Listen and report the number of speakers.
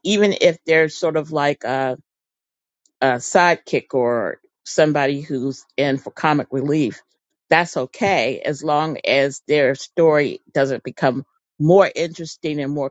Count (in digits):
1